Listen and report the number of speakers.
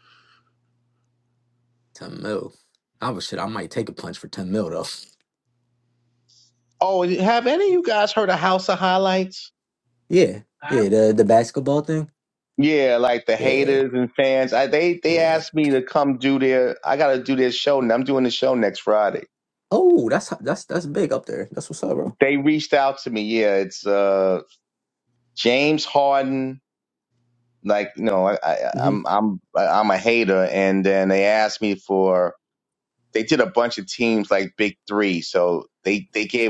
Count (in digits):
2